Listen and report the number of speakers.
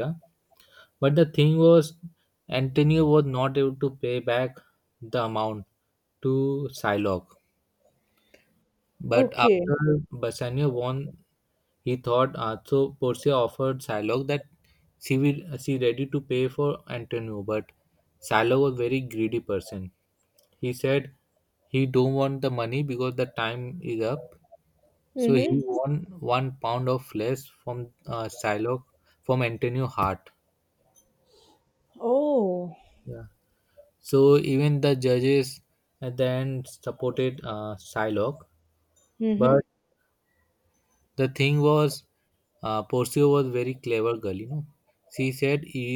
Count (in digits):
2